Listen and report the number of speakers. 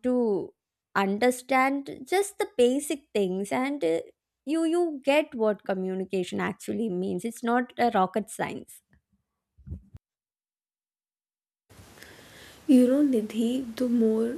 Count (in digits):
2